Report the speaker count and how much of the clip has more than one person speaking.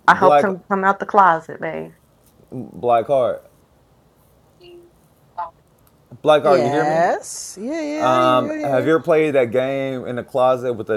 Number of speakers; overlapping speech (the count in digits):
3, about 18%